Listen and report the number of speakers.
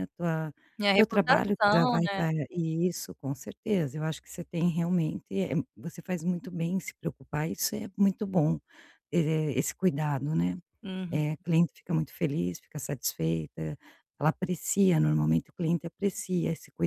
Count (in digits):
2